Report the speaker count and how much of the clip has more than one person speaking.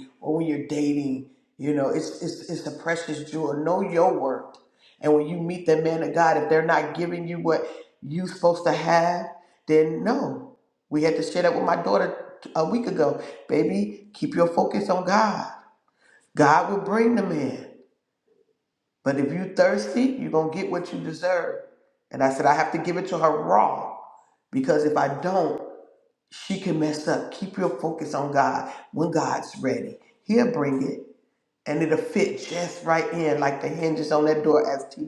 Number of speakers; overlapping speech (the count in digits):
1, no overlap